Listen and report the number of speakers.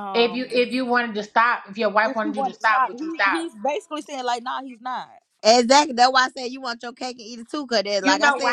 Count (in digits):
3